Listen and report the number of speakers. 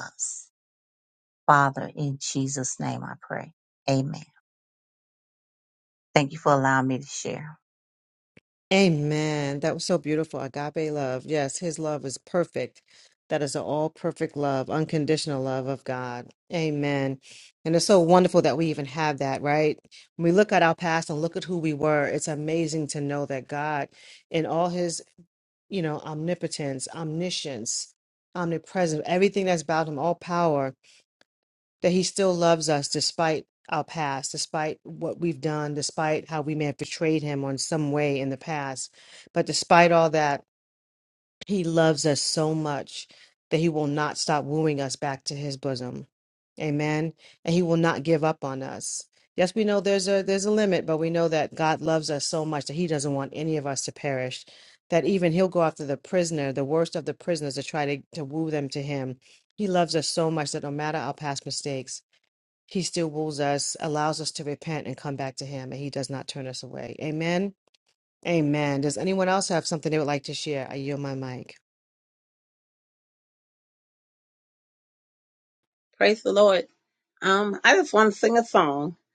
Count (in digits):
3